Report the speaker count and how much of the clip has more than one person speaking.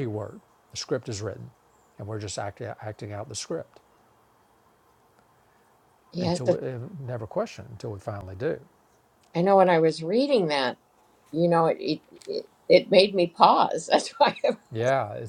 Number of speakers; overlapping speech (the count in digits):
2, about 2%